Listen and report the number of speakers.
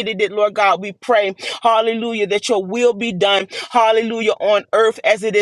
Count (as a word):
one